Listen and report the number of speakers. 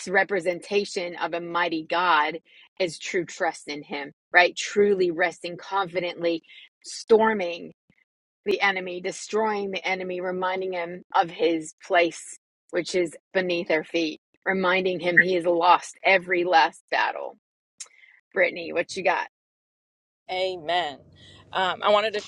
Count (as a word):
two